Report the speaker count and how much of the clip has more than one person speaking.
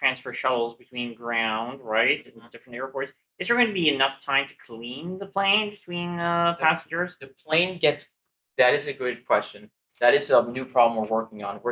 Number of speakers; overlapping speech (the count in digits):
2, about 7%